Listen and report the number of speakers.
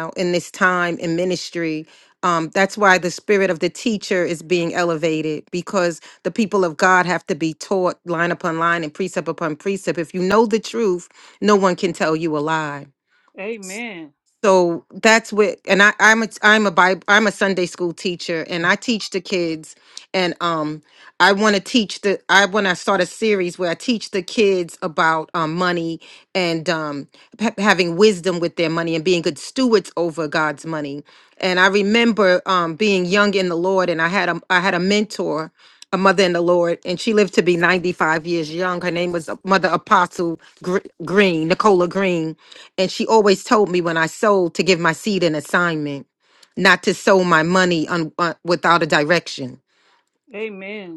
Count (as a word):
two